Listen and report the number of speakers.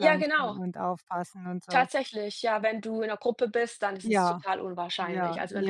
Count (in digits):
2